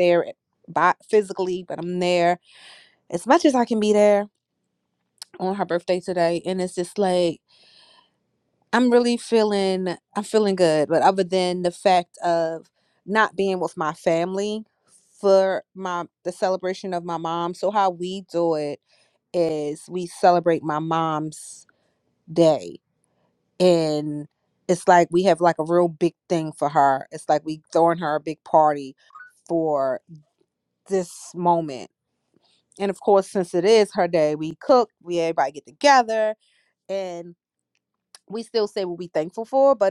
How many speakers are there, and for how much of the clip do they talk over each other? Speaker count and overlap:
one, no overlap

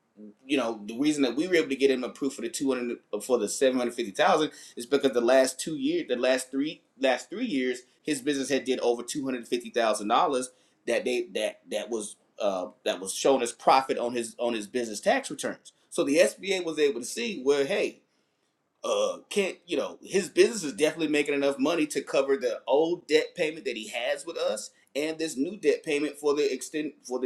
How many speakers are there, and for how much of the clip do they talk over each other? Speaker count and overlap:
one, no overlap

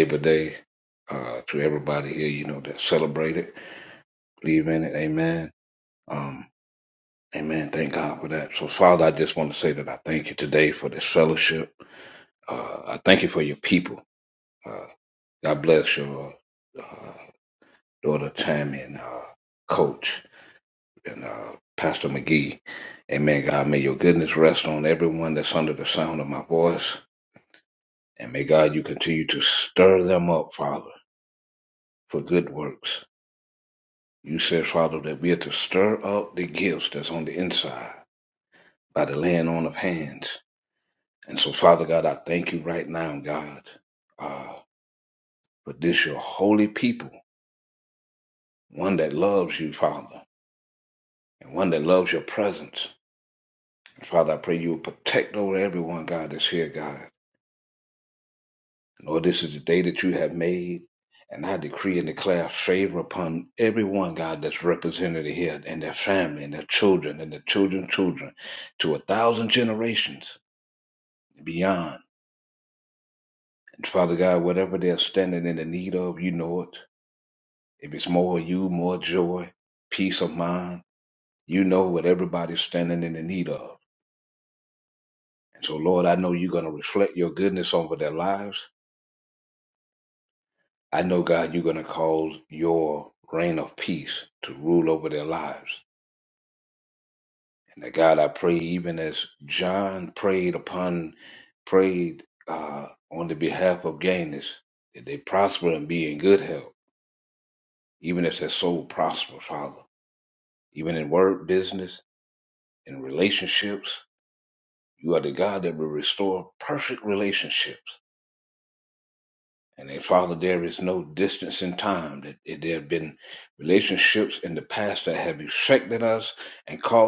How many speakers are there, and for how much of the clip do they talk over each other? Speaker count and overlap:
one, no overlap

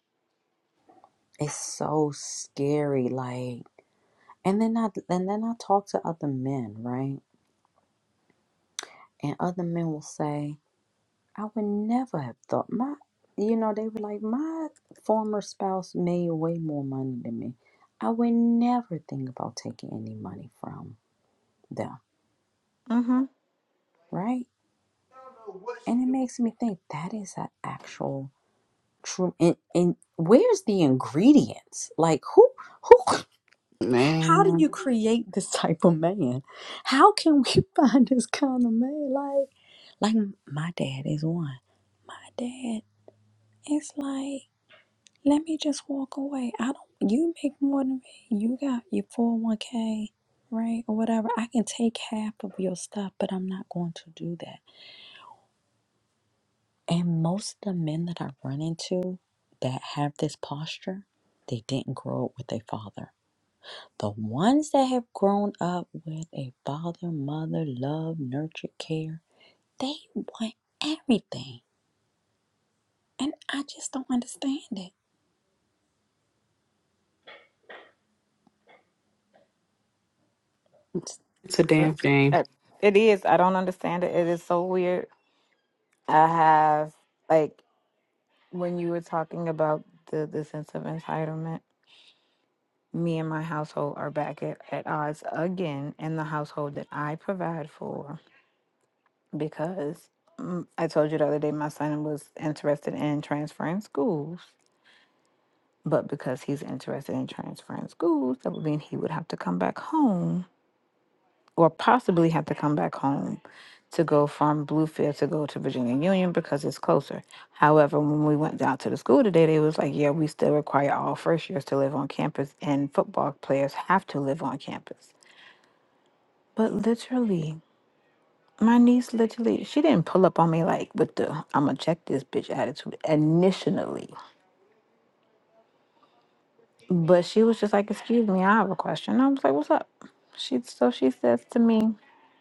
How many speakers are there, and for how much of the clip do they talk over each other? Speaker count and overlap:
three, under 1%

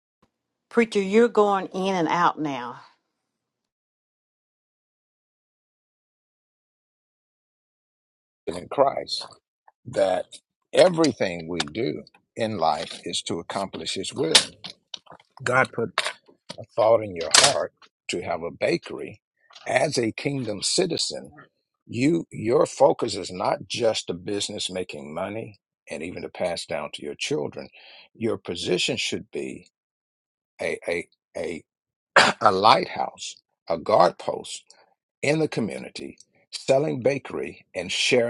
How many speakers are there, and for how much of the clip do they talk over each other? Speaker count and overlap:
two, no overlap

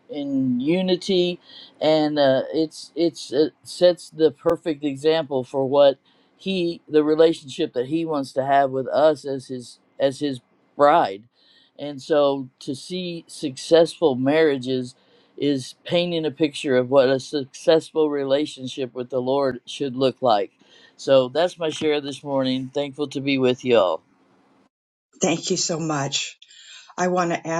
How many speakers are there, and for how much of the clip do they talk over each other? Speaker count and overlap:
two, no overlap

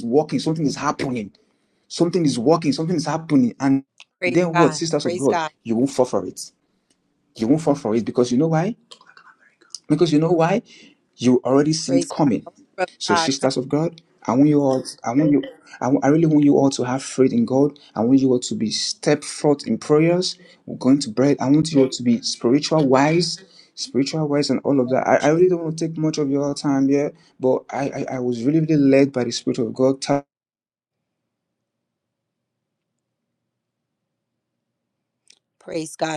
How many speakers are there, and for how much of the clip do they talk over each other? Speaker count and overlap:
two, about 7%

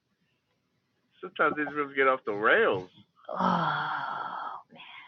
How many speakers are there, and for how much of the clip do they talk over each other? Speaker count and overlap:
two, no overlap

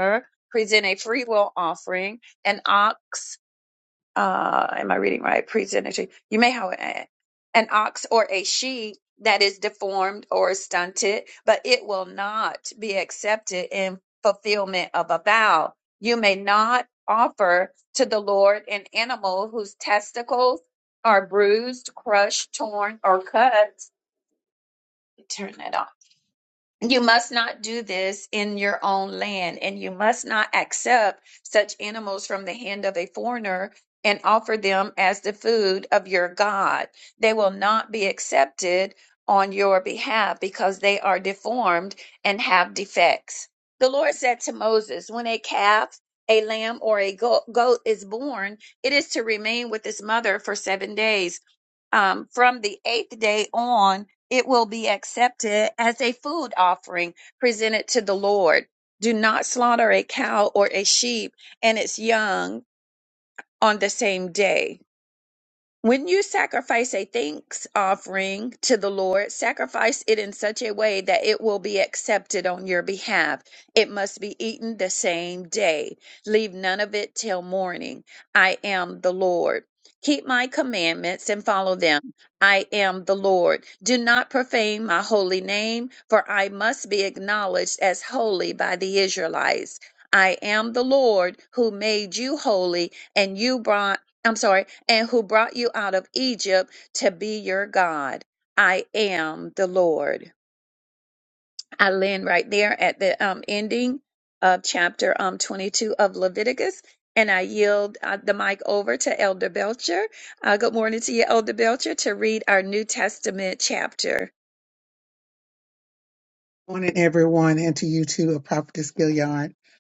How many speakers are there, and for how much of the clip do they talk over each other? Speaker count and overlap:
two, no overlap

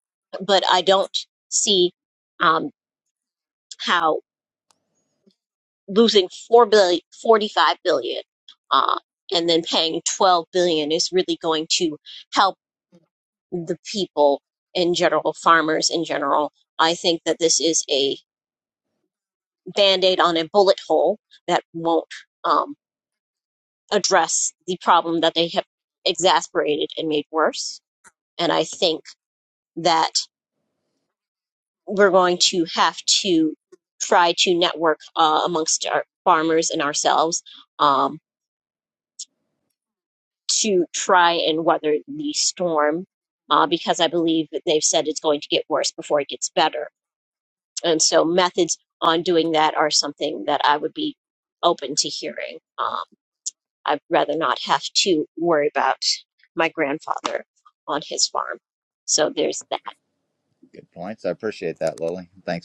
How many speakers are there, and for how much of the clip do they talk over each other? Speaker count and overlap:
two, no overlap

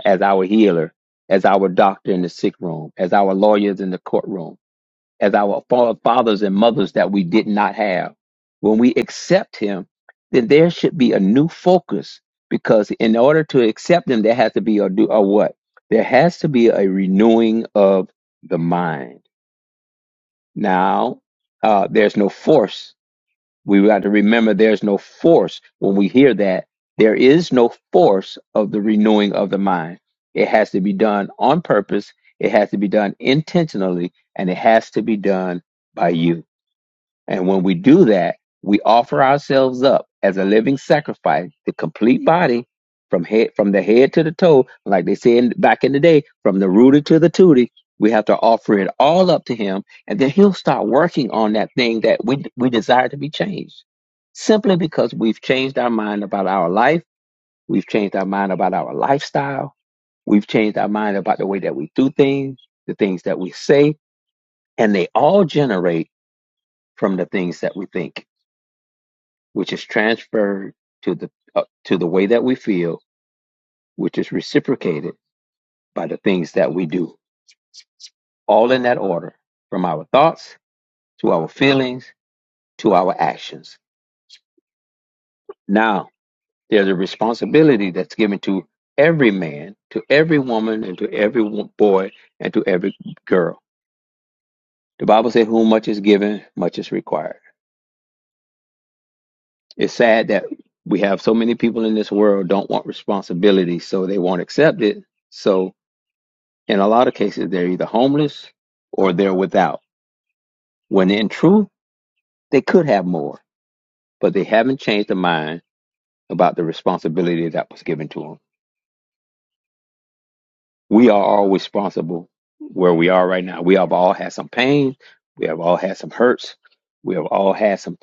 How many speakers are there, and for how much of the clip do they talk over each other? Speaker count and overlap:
one, no overlap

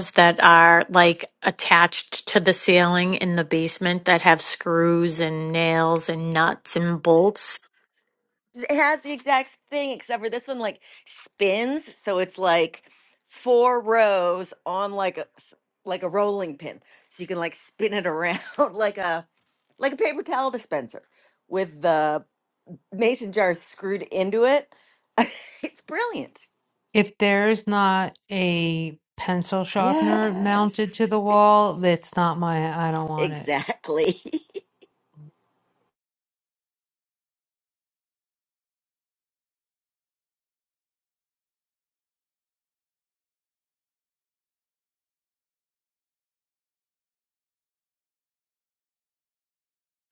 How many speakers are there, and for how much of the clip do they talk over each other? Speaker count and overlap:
three, about 2%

